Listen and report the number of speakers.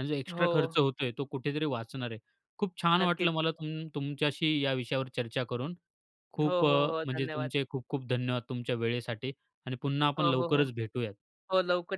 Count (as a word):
two